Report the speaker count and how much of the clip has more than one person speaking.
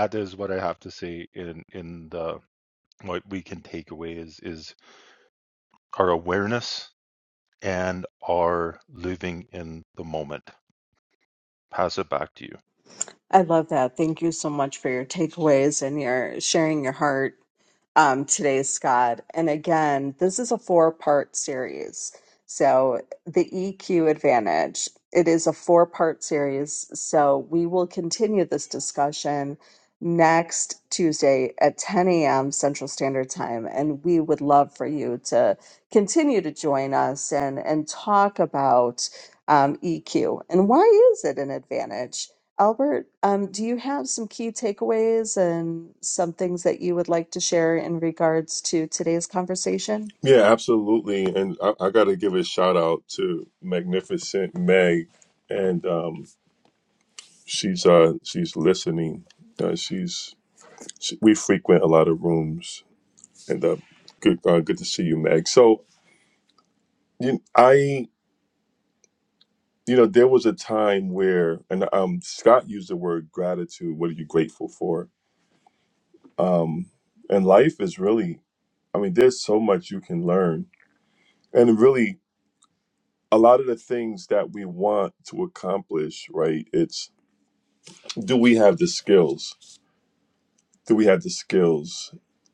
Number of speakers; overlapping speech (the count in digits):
3, no overlap